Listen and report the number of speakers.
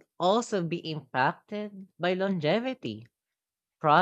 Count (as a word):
one